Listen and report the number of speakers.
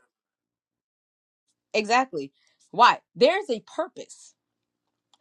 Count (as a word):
one